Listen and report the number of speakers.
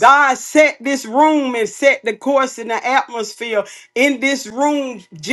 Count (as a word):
one